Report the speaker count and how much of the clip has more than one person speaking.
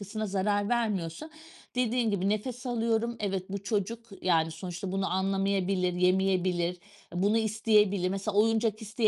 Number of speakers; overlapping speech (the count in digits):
1, no overlap